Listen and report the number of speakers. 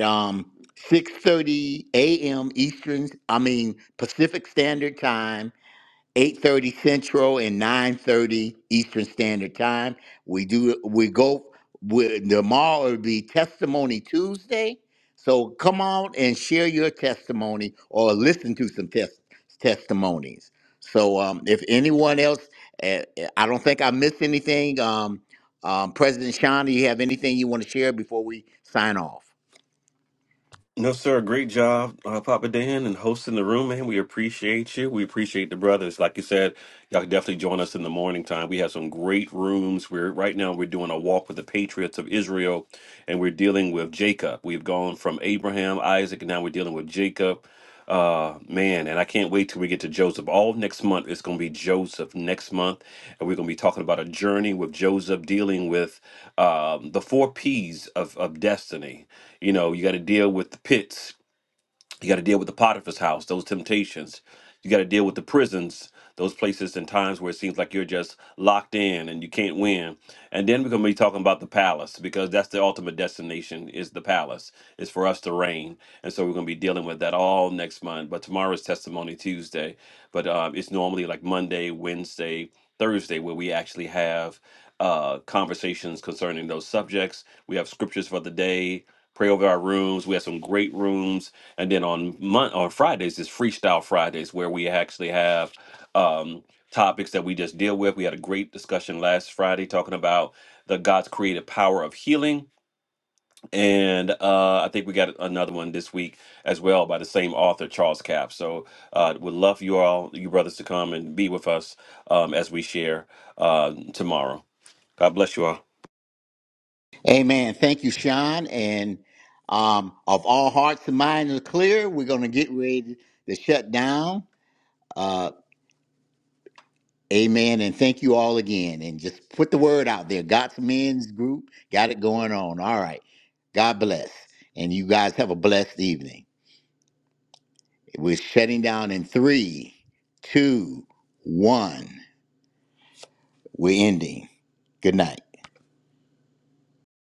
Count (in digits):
2